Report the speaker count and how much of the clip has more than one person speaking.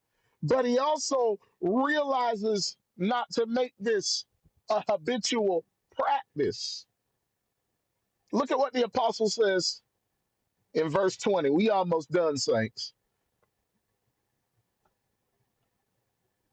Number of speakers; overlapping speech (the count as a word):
one, no overlap